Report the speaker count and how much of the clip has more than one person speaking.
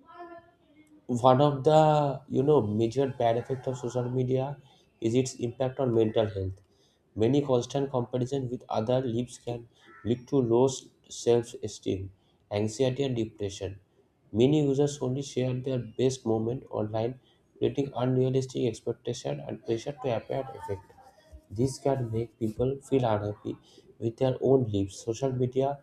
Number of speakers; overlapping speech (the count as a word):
one, no overlap